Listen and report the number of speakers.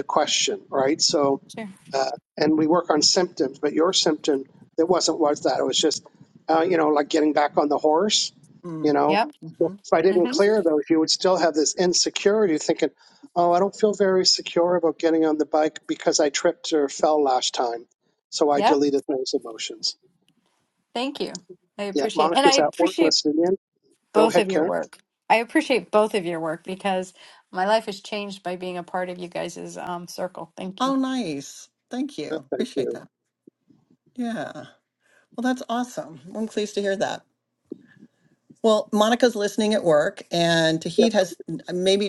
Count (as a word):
three